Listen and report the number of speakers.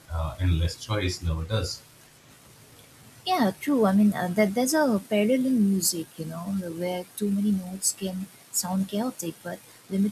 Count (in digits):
2